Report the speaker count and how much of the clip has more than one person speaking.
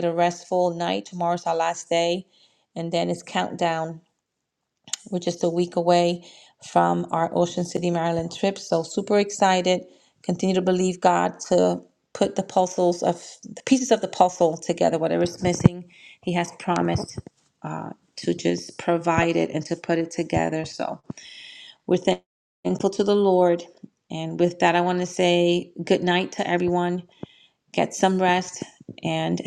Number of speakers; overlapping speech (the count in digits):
1, no overlap